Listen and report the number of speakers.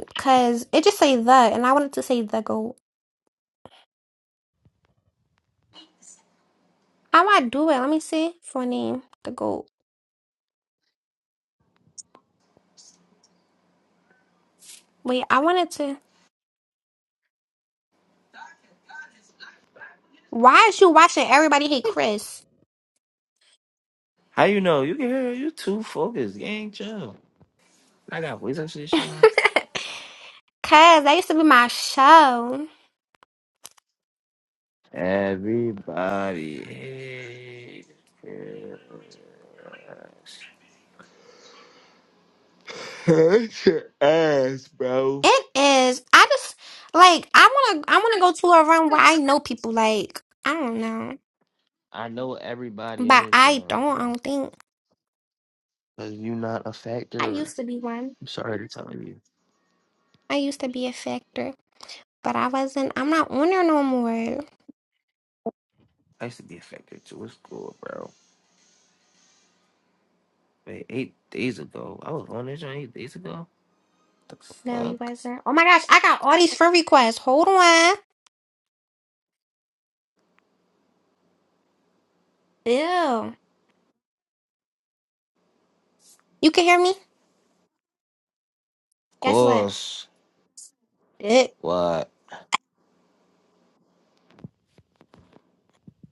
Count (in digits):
2